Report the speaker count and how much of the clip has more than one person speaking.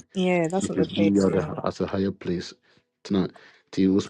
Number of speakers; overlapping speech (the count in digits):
2, about 22%